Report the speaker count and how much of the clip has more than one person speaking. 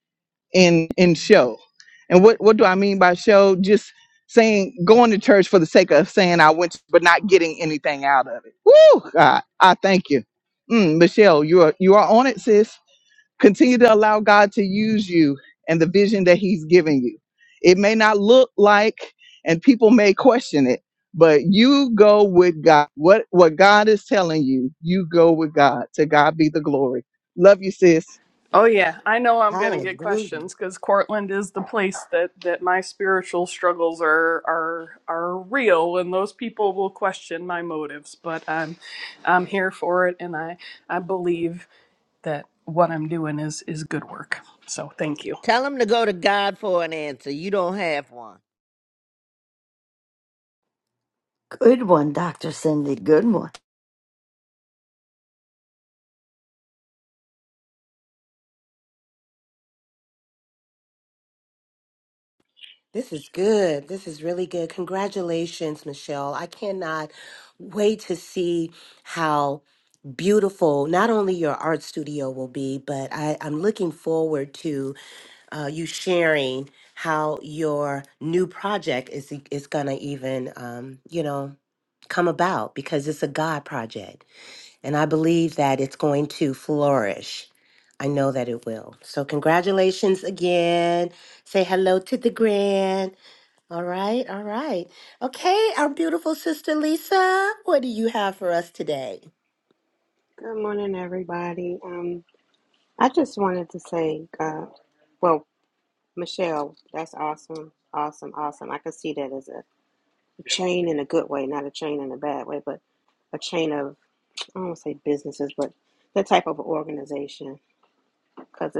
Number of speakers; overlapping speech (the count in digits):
6, about 1%